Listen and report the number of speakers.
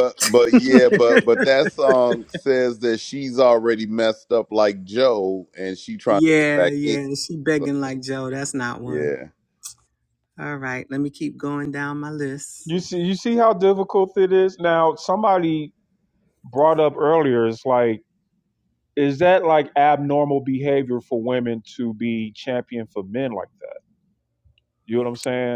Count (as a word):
three